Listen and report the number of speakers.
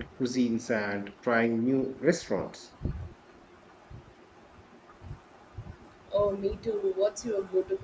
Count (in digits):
2